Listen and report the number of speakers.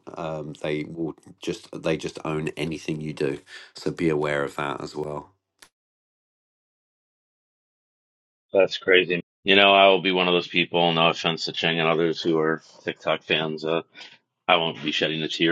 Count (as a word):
two